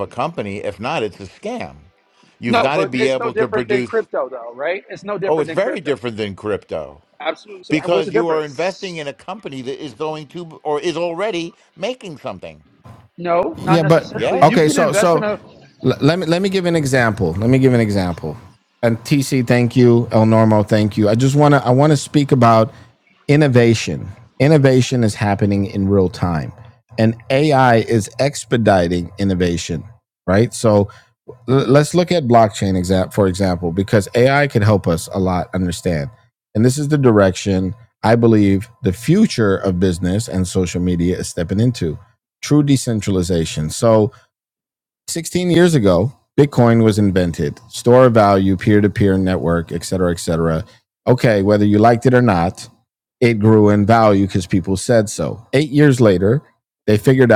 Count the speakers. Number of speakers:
3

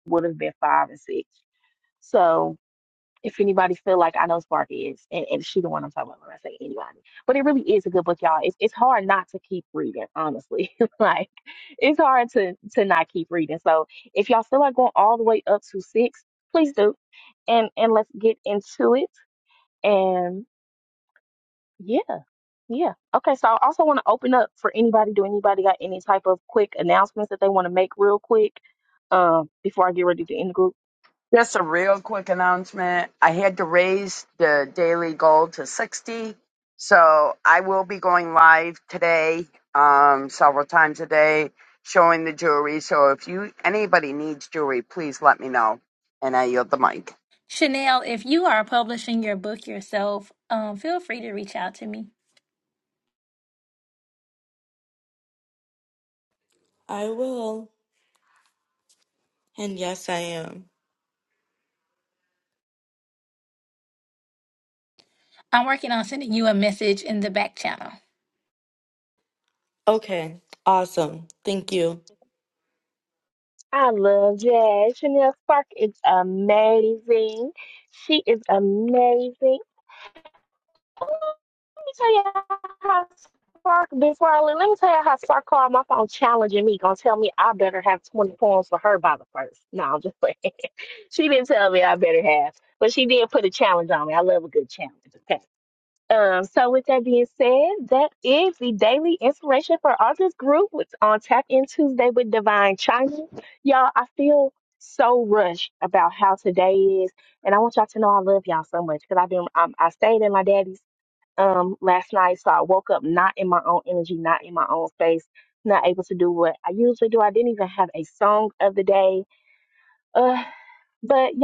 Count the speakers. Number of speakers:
4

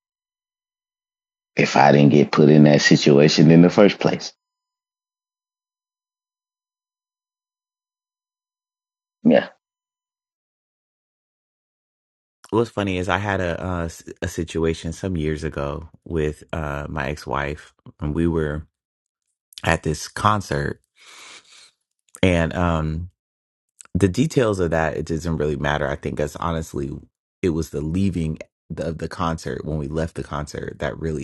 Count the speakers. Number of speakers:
2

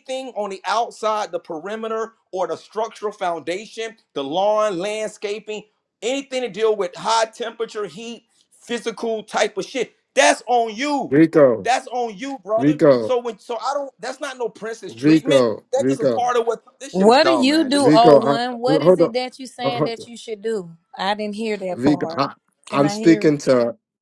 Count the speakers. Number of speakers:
3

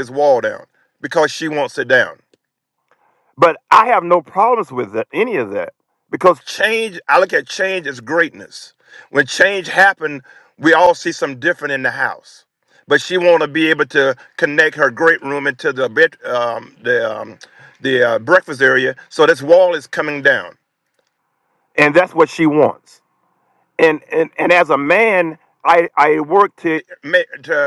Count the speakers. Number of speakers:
1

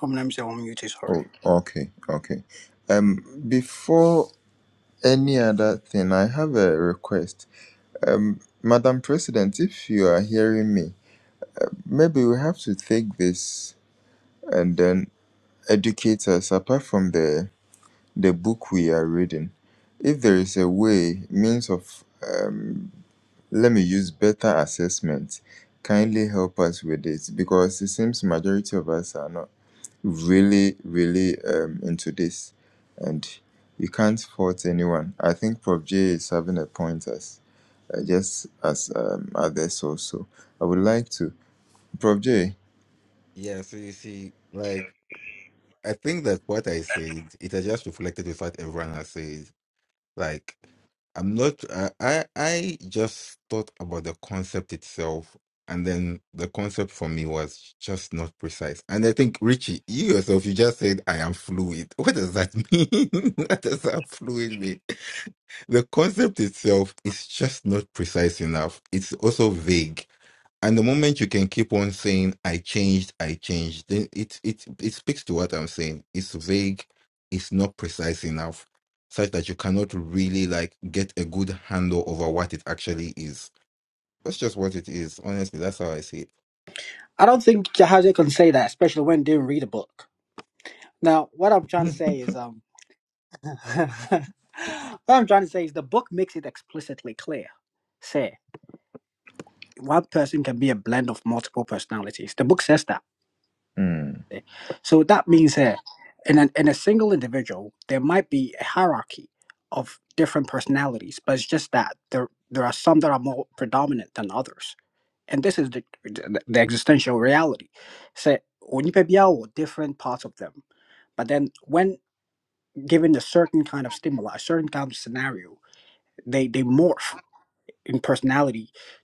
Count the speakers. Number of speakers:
3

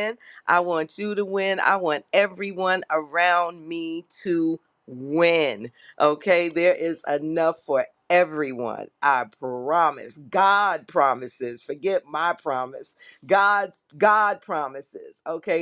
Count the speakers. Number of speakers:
1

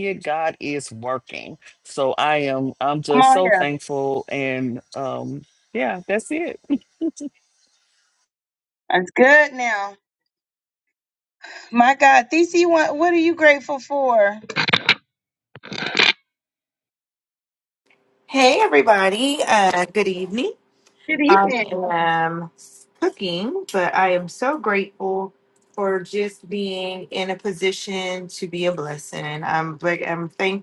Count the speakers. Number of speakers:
3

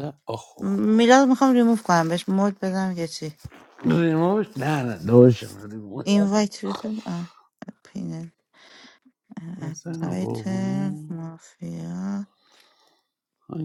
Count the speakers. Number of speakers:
2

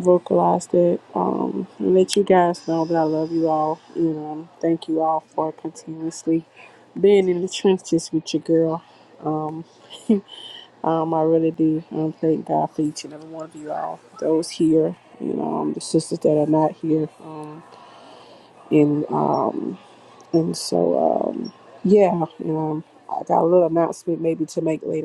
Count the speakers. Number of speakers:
1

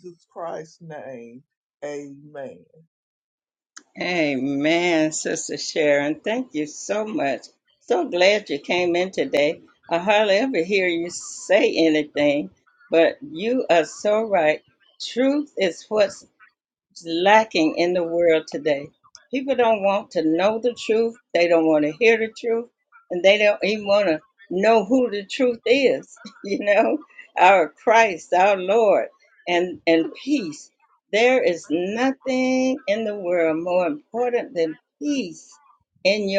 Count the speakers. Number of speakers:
2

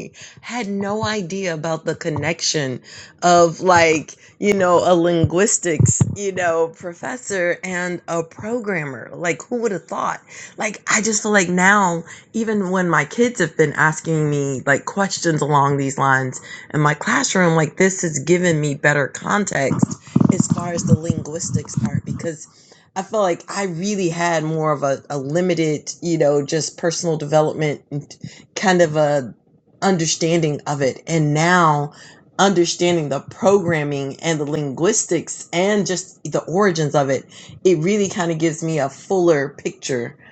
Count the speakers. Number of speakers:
1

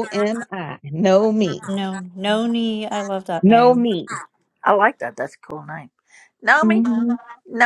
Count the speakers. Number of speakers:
3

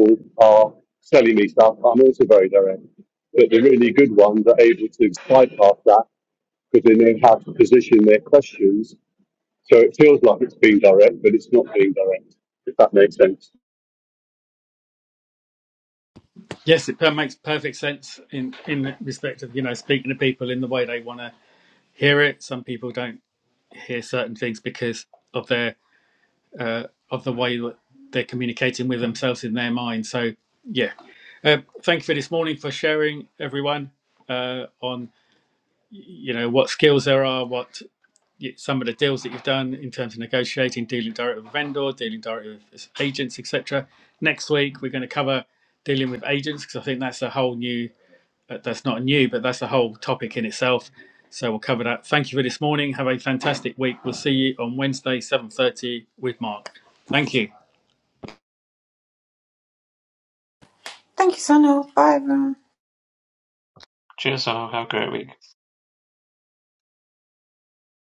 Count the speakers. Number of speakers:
4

